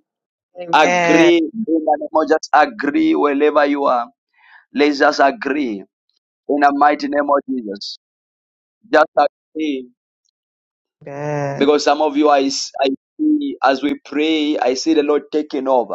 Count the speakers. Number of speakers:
two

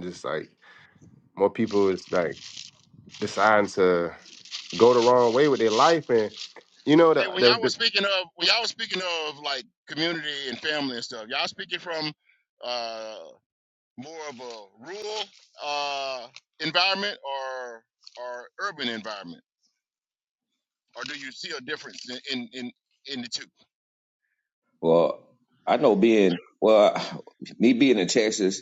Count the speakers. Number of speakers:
three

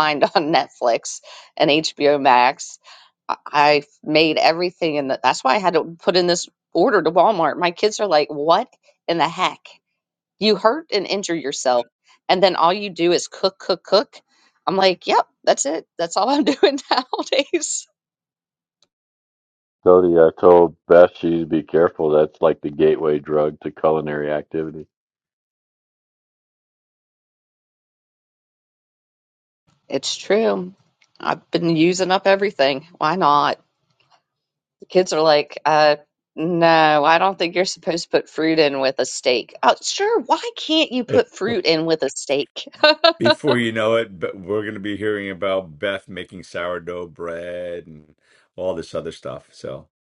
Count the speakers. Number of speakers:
three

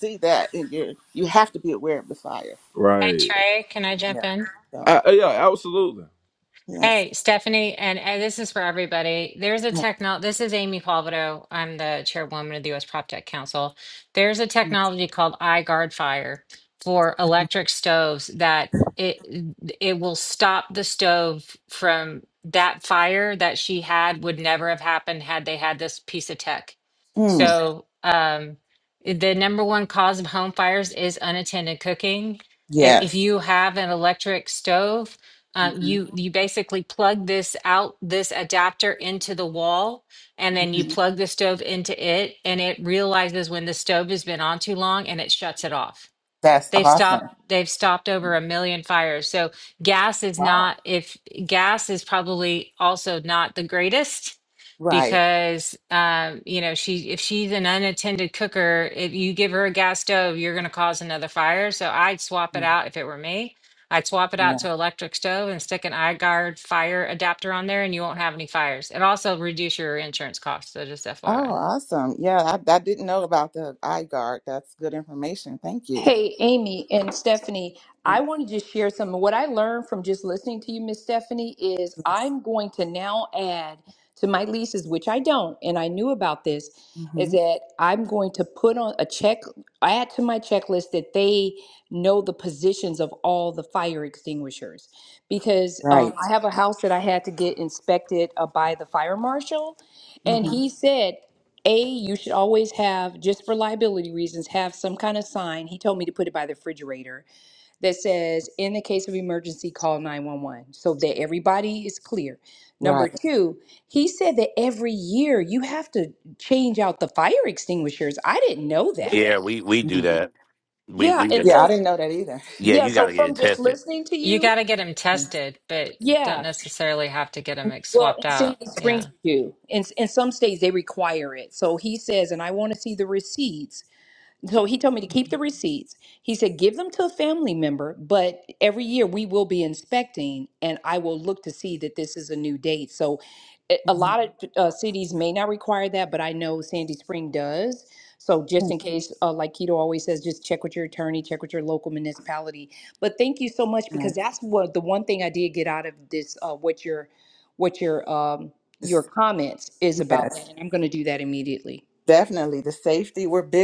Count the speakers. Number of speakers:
five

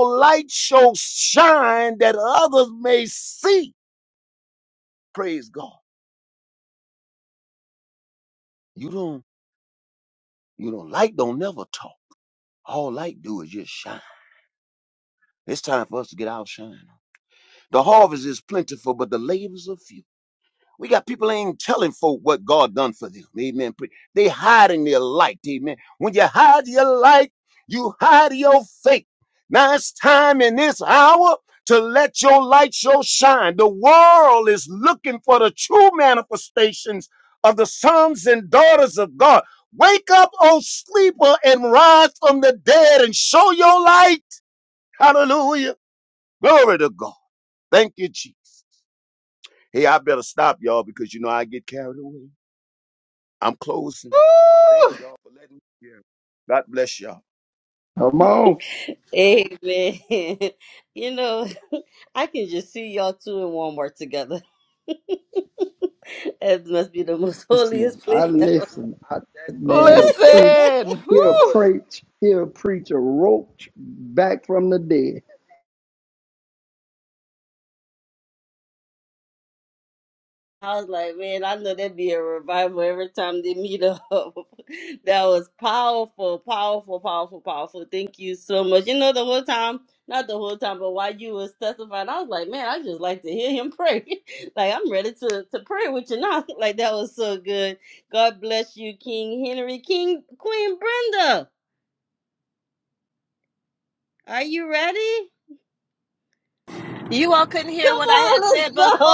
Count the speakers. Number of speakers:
five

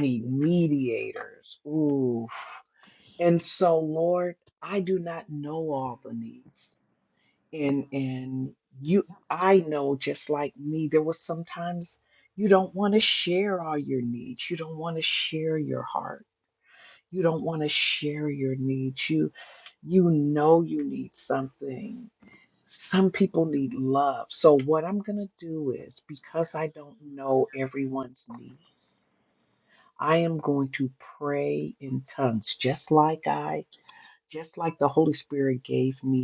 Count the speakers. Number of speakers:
one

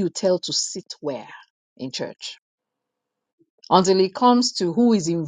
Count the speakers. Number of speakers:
one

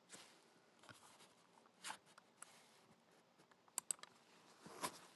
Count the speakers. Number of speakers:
zero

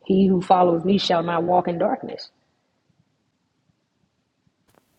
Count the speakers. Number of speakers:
one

